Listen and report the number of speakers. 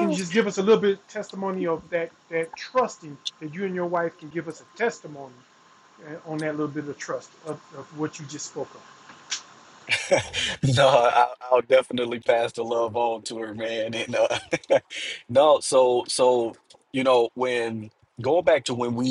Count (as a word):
two